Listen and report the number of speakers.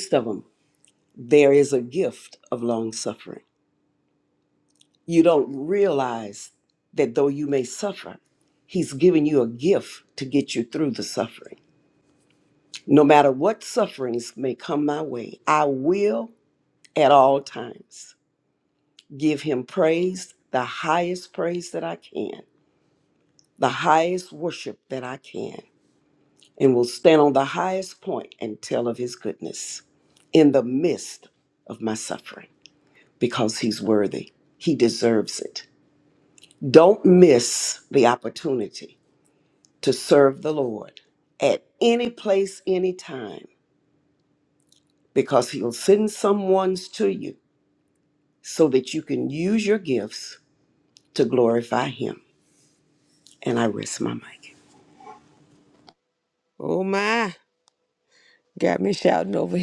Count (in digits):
2